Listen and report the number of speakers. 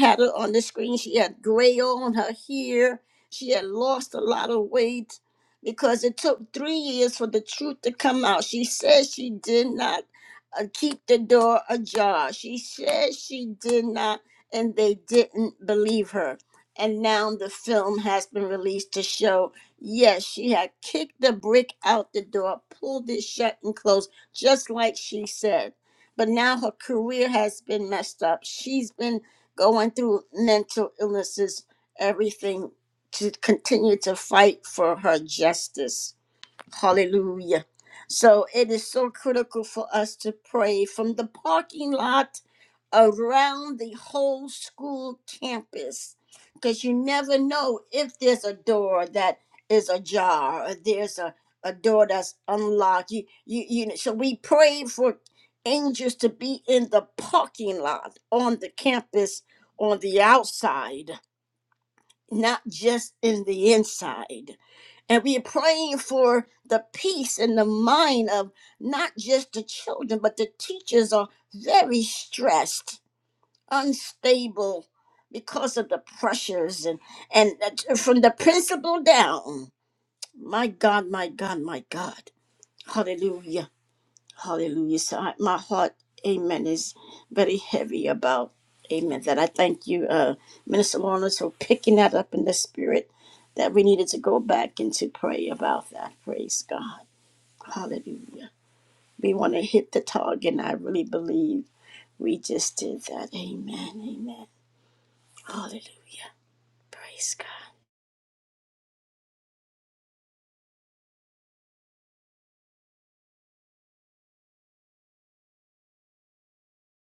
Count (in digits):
1